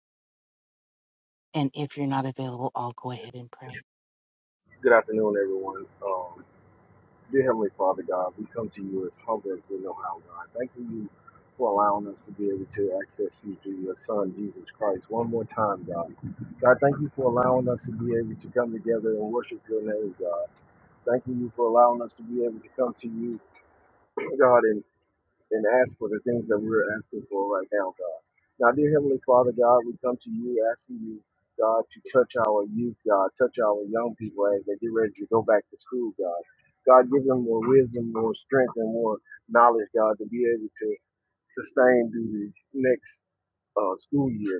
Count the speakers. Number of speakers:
2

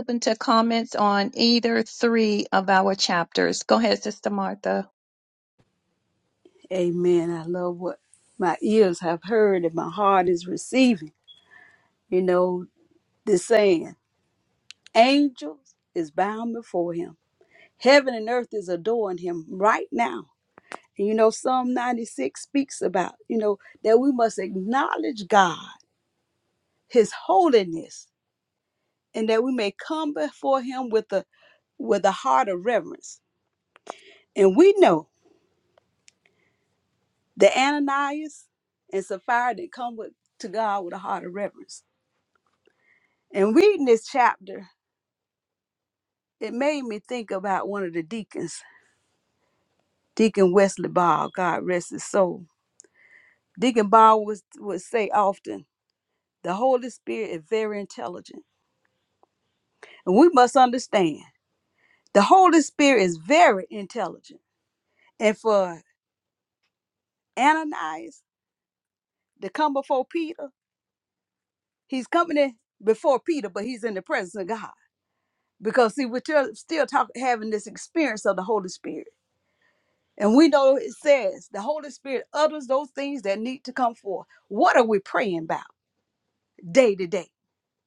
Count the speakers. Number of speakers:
2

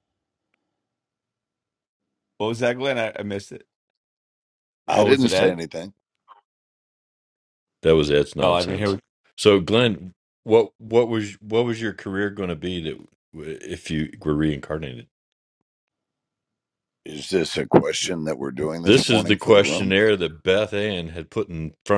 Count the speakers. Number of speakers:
3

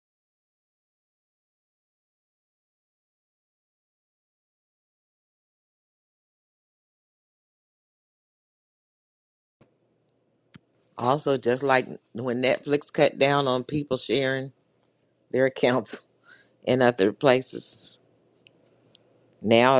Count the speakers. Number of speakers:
1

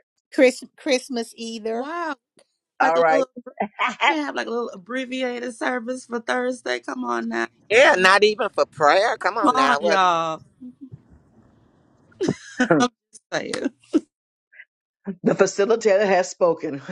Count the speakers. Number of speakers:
4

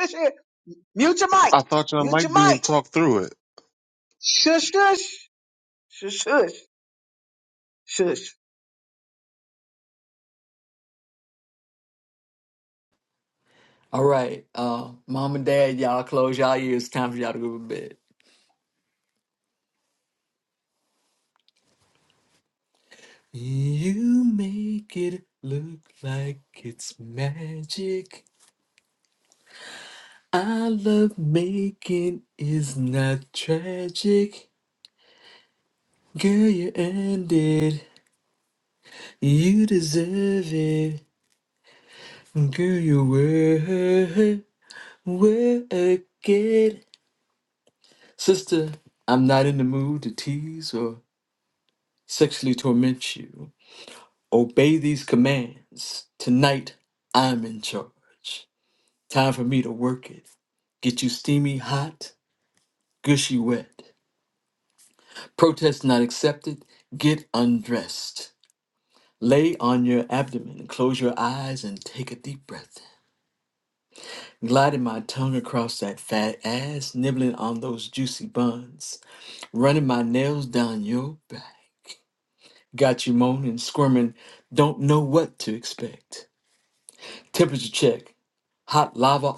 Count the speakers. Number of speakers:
3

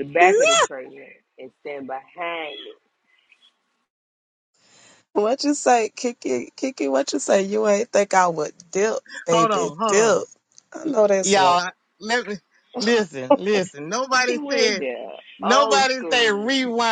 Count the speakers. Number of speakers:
3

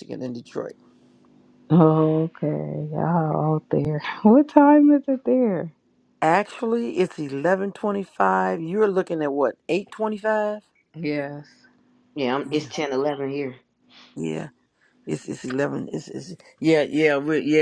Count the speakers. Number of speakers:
3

